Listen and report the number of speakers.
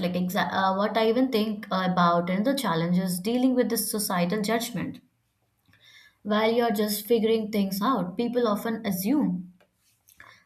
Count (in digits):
1